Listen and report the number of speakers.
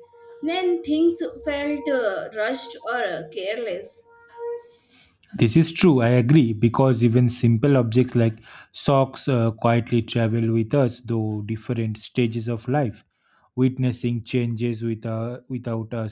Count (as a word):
two